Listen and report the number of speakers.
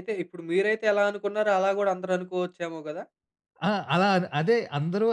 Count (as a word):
two